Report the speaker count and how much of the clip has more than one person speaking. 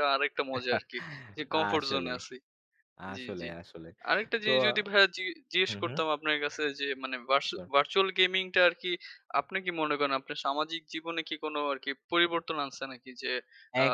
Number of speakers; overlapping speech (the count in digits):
2, about 13%